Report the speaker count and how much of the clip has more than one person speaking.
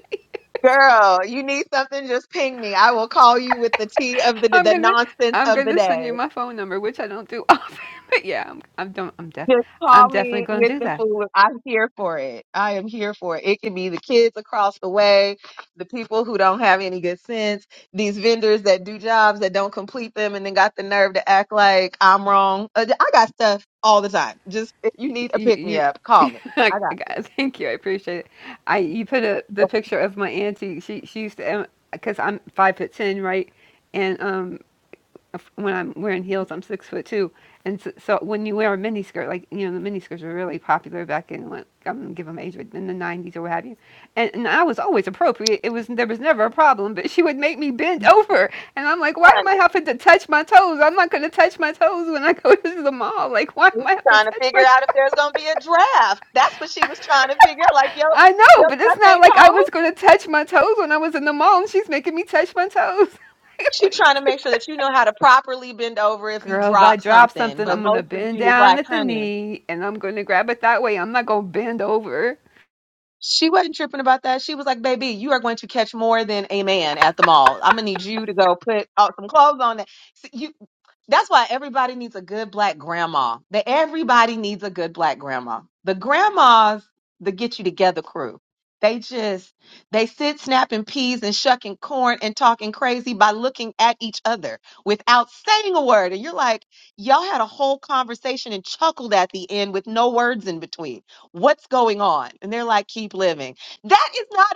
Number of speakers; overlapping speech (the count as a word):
two, about 9%